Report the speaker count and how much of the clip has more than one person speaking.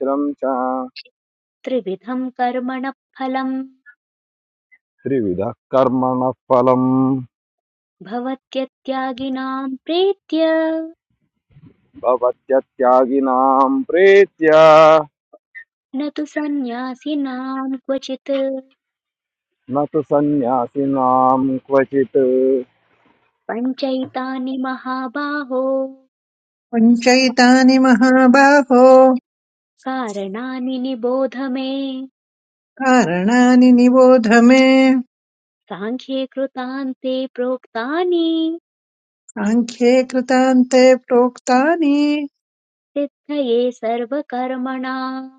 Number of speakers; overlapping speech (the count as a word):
three, no overlap